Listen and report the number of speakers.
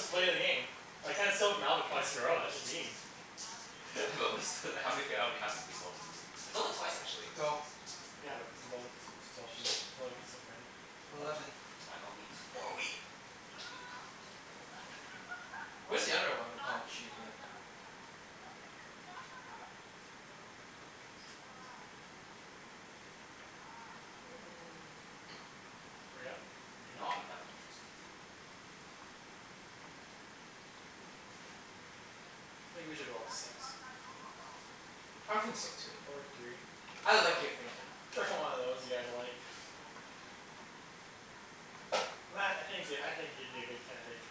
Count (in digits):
3